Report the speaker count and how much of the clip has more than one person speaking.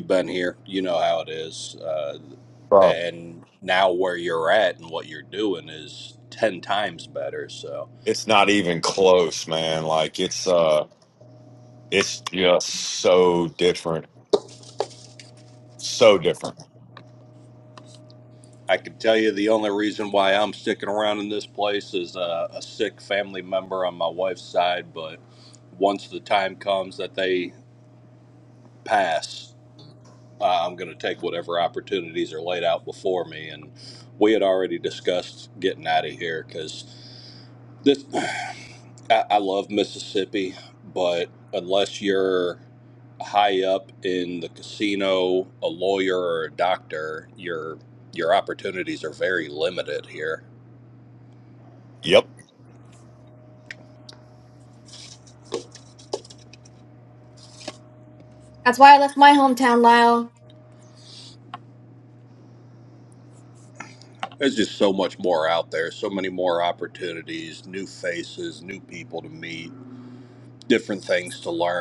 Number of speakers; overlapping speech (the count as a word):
three, under 1%